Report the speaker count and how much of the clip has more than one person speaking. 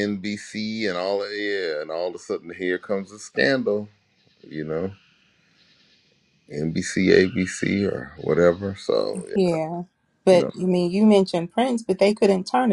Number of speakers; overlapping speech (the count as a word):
two, about 2%